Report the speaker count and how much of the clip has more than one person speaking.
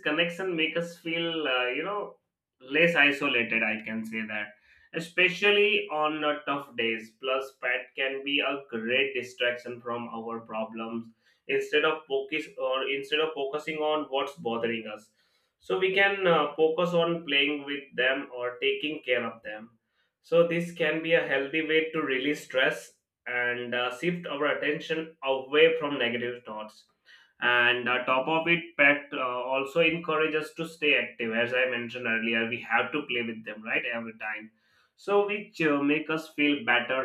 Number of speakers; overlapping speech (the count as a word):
one, no overlap